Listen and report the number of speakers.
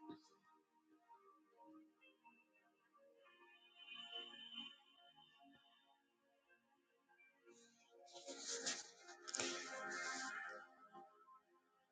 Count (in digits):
0